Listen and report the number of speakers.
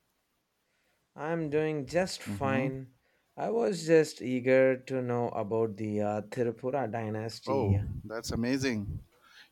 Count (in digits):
2